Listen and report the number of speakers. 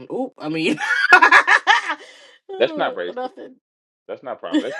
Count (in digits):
2